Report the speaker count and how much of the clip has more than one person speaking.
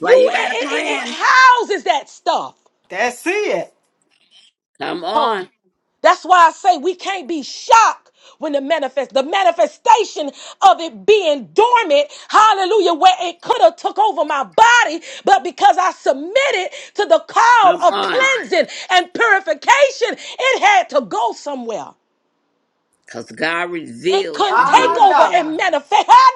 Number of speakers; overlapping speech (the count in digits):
3, about 13%